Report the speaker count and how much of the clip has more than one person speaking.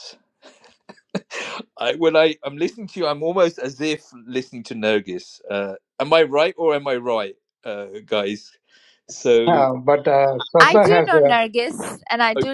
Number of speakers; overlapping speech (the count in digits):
3, about 8%